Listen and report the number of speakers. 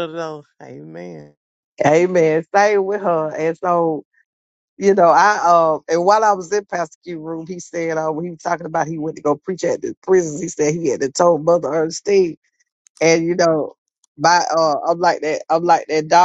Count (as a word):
two